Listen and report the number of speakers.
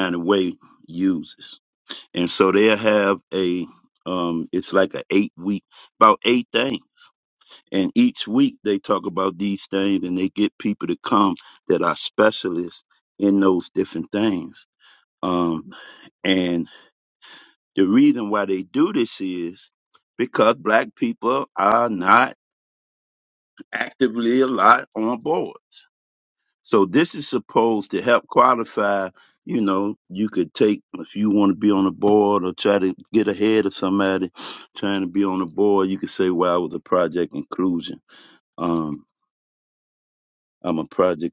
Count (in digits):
1